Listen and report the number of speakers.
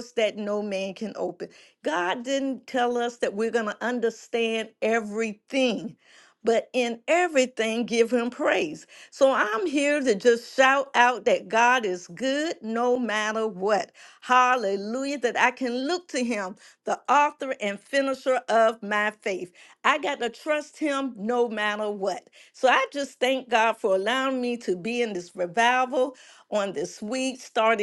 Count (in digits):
1